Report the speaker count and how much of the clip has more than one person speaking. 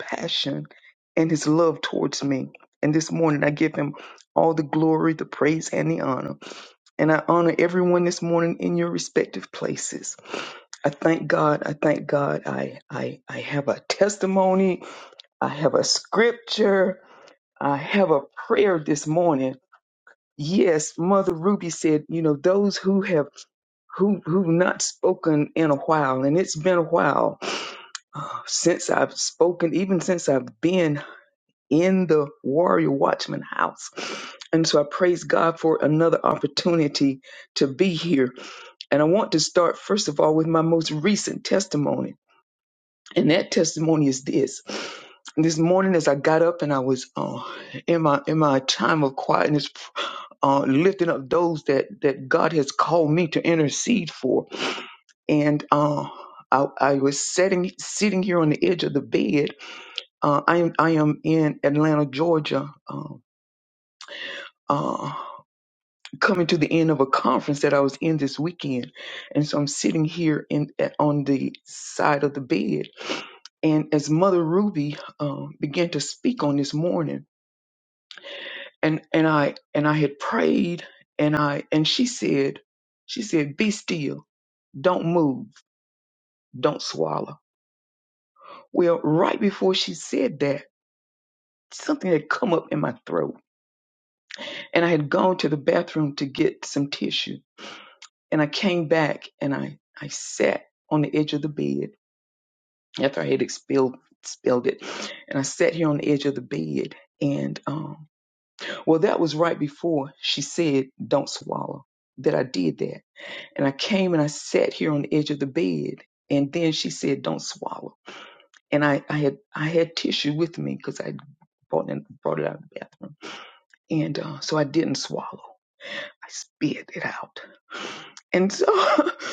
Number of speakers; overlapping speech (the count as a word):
one, no overlap